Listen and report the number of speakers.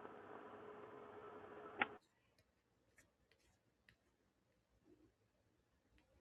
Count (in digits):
0